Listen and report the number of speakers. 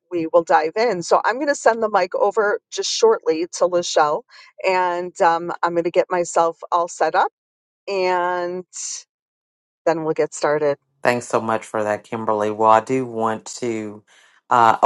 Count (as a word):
two